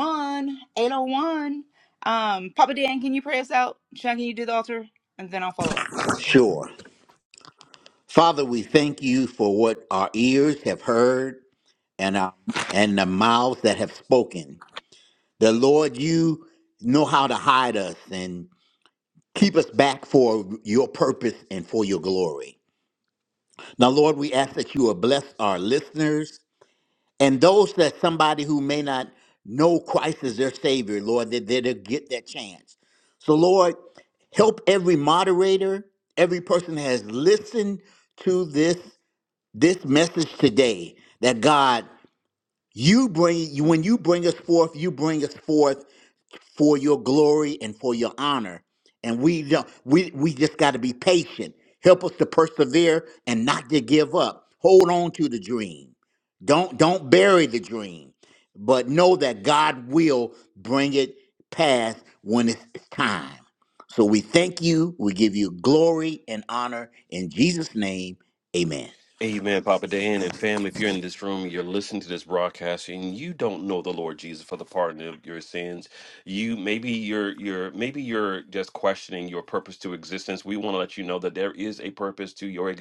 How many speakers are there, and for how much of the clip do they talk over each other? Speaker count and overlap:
3, no overlap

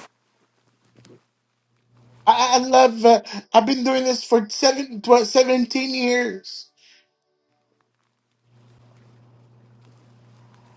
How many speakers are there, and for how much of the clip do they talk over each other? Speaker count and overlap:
1, no overlap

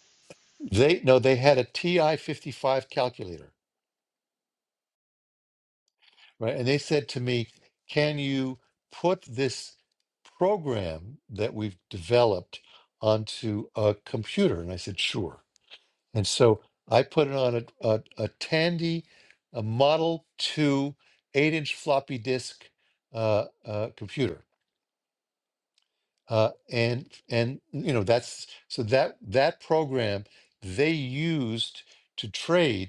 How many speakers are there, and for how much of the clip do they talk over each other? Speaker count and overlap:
1, no overlap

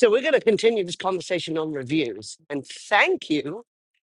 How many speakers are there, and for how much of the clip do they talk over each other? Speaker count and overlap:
1, no overlap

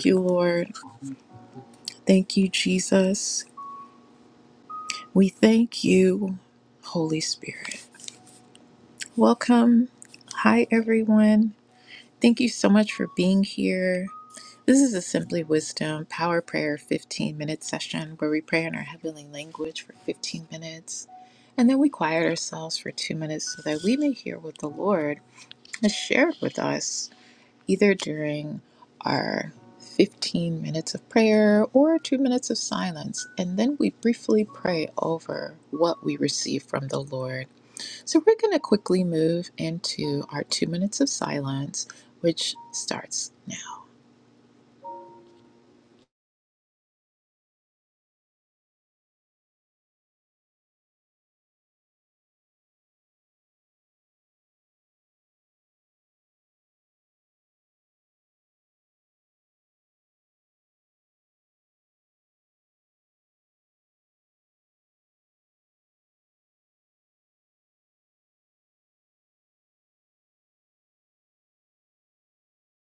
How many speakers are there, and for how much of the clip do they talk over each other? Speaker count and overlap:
1, no overlap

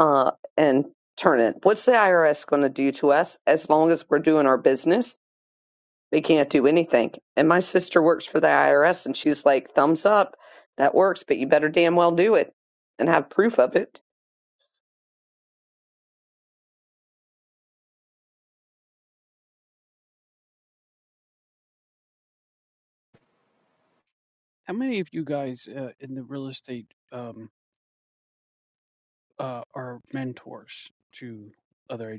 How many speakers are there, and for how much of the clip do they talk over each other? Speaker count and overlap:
2, no overlap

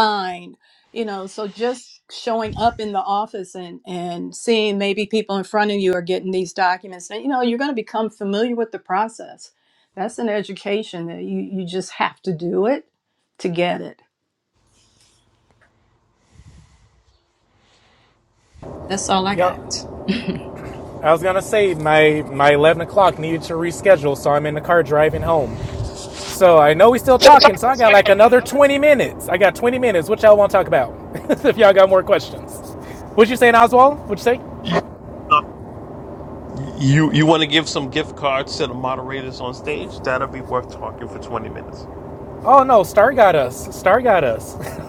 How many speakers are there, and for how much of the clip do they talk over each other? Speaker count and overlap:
3, about 4%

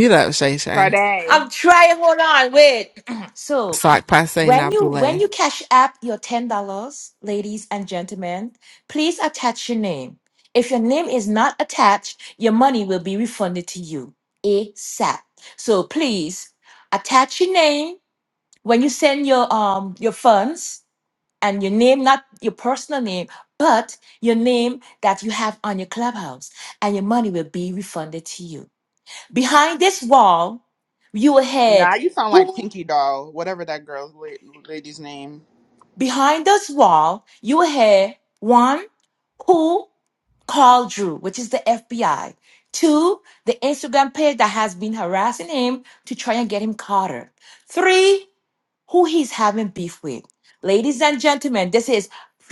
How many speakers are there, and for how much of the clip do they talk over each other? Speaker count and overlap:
3, about 3%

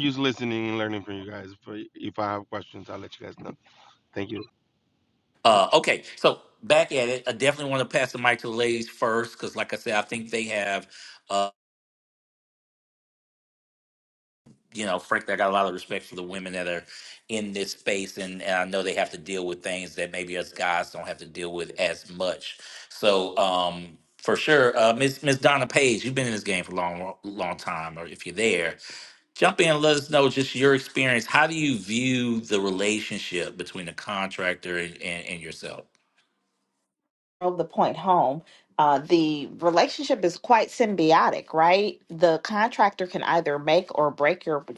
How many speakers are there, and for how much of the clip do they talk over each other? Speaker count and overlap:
3, no overlap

